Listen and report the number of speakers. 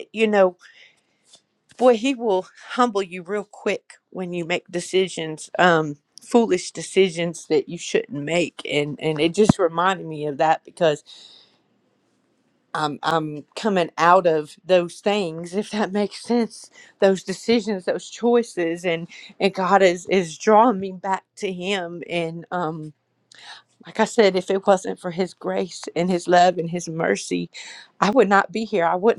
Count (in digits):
1